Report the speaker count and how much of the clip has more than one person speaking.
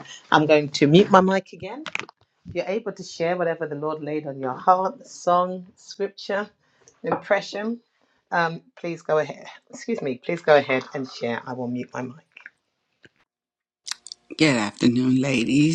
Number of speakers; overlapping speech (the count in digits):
2, no overlap